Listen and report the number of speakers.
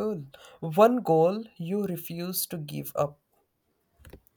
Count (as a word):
one